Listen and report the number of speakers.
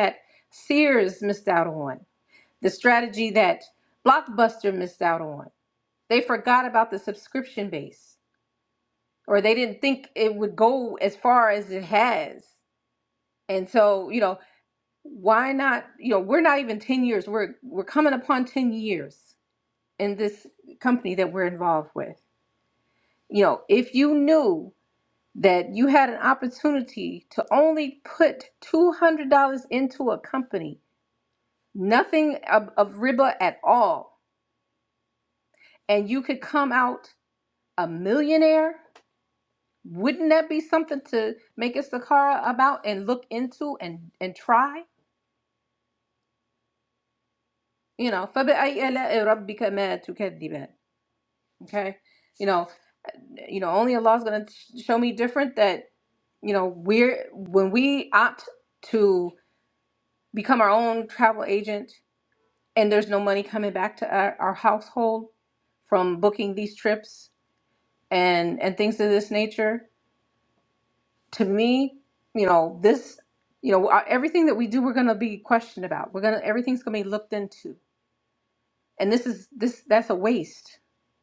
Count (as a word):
one